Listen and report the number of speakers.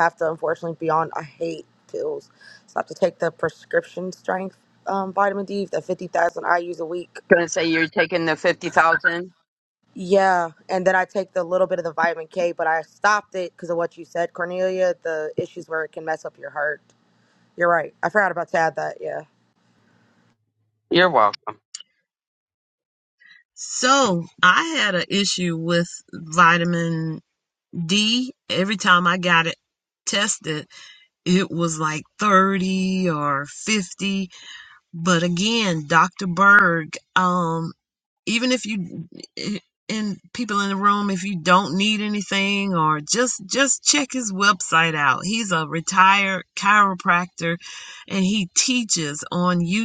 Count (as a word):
three